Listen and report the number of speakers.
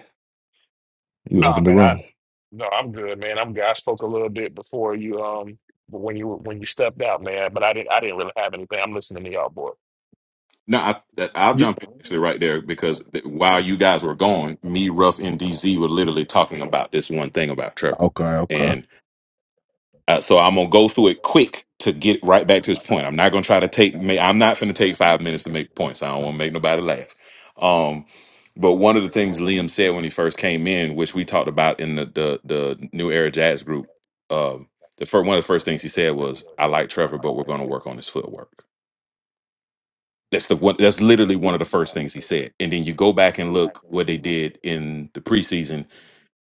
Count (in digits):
3